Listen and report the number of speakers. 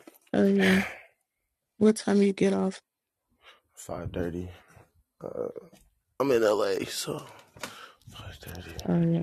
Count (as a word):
two